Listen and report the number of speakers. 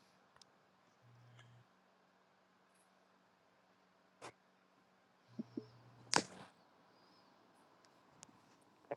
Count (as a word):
zero